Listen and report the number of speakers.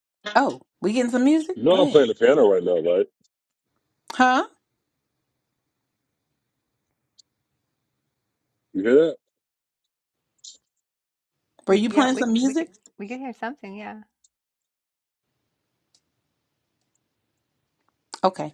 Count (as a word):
three